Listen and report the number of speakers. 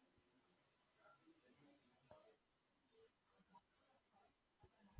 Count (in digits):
0